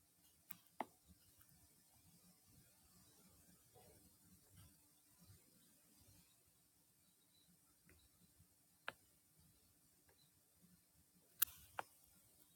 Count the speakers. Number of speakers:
0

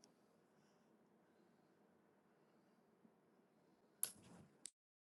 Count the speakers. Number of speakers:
0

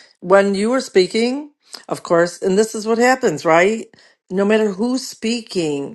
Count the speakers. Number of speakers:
1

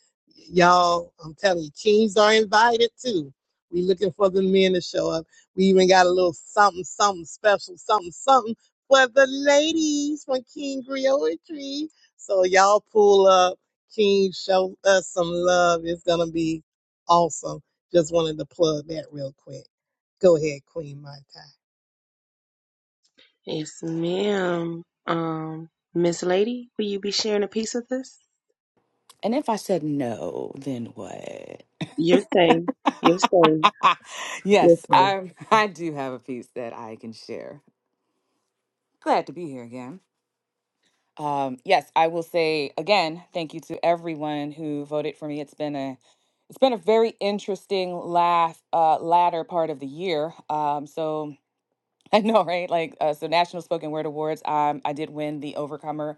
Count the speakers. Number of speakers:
3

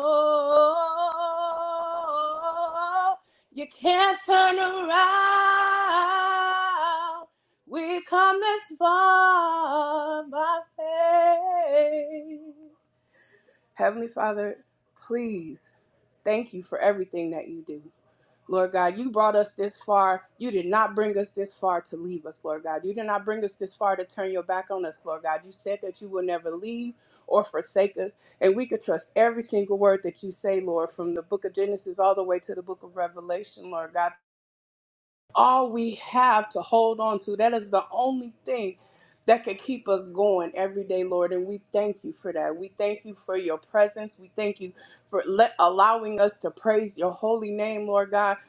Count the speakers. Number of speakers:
1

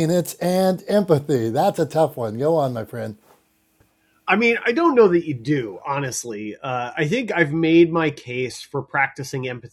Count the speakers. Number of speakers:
2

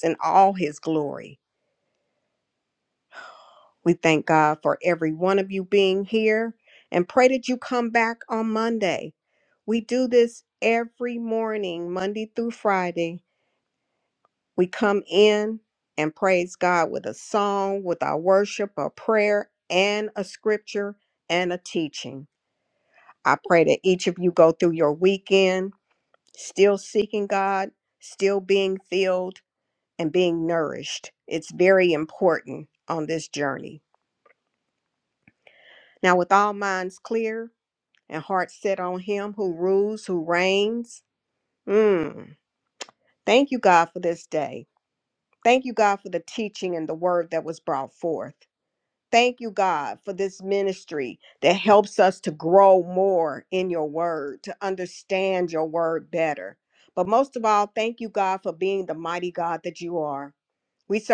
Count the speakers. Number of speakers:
1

